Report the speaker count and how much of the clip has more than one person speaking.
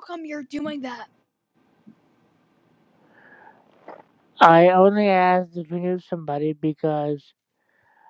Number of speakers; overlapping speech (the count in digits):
2, no overlap